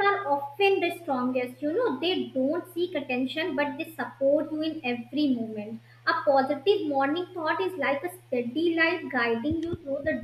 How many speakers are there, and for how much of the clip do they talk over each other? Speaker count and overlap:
1, no overlap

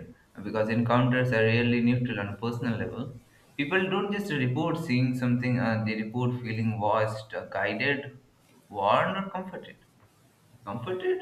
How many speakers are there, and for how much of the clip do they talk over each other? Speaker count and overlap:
1, no overlap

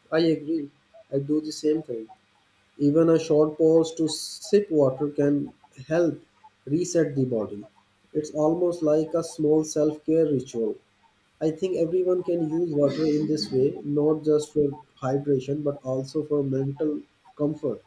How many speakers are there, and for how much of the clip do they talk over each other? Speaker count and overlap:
1, no overlap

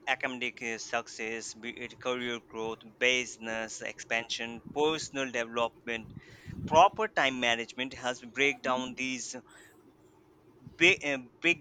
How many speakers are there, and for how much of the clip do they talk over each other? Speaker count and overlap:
1, no overlap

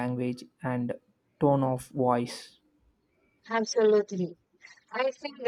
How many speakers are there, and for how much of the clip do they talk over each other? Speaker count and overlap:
2, no overlap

